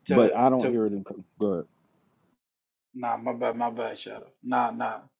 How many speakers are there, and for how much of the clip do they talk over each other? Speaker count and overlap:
2, about 14%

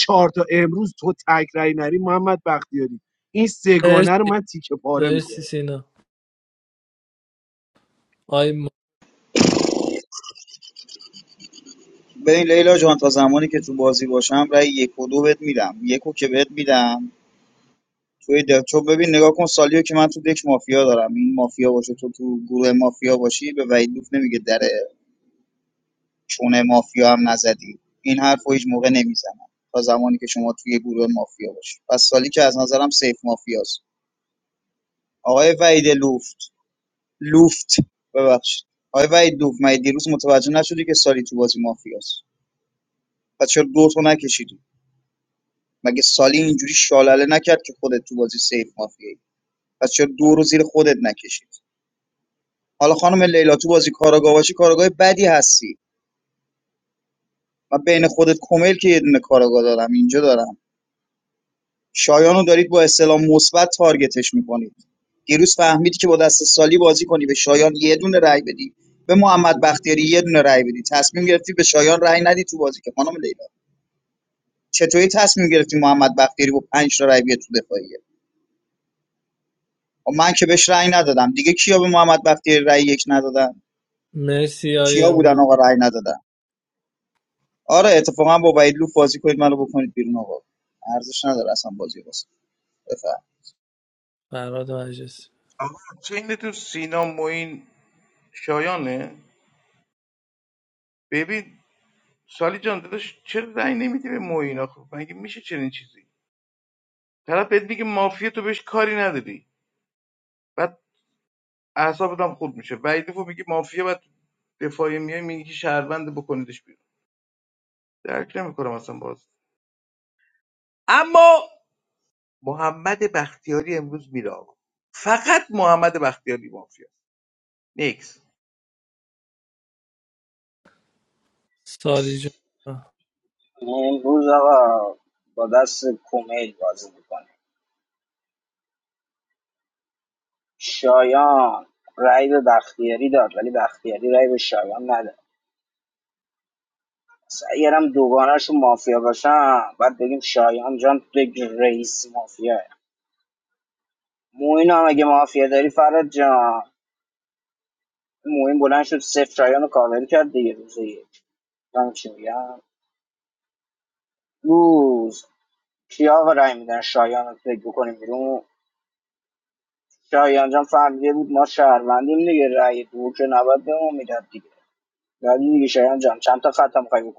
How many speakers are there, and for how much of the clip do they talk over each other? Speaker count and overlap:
5, about 1%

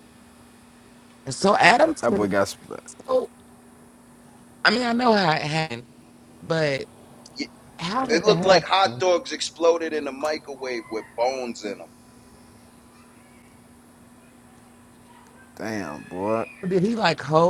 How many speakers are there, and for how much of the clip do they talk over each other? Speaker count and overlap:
3, about 7%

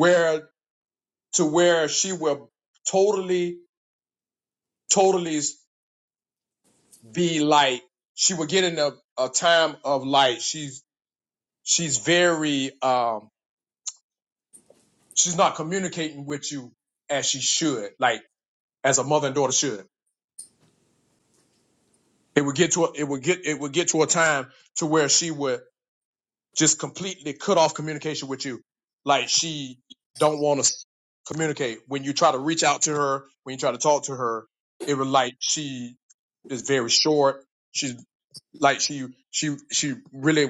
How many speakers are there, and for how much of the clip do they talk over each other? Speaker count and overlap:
1, no overlap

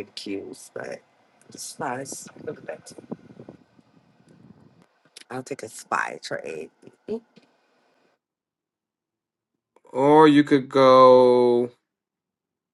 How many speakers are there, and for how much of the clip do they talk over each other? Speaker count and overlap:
2, no overlap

